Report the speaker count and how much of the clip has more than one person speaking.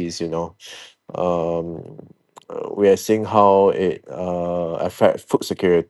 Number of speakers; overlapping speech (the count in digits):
1, no overlap